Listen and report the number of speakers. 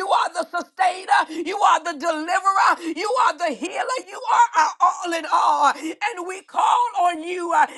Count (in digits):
1